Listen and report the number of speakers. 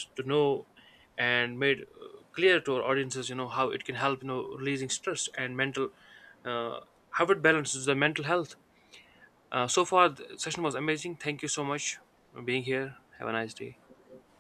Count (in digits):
1